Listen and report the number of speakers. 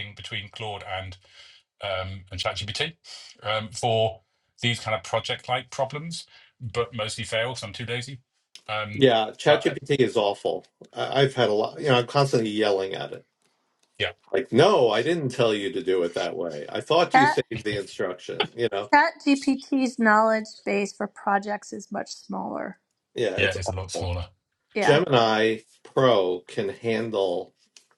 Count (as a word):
three